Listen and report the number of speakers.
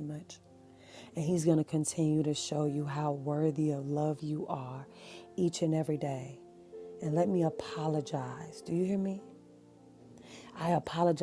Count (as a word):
one